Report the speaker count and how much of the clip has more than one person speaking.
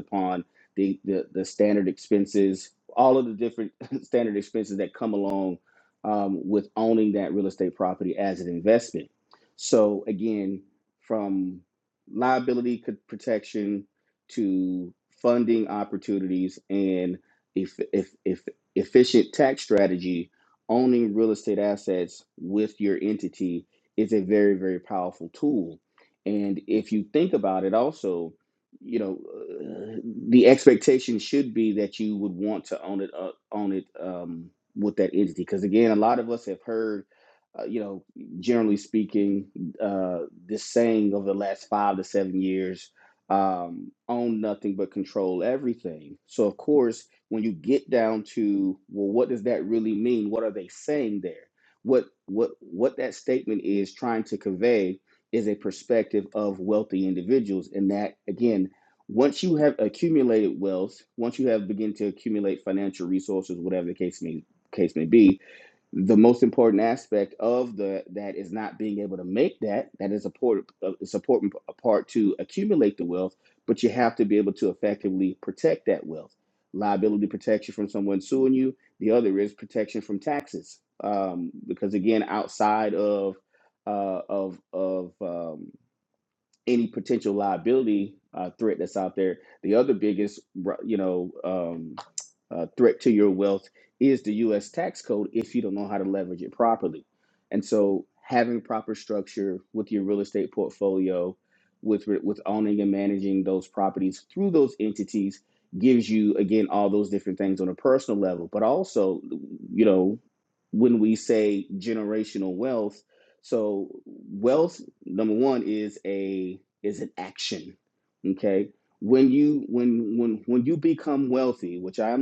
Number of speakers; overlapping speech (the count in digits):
1, no overlap